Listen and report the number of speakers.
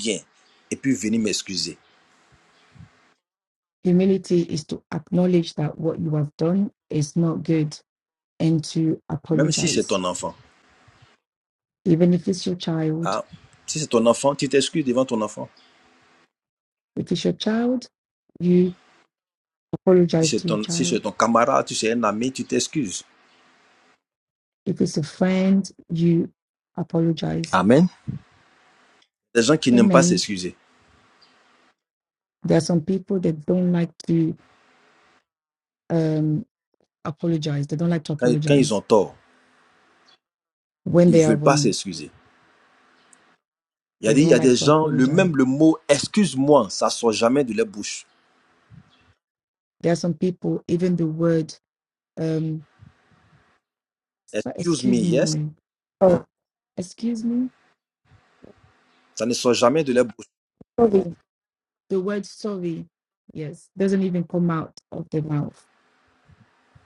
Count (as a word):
two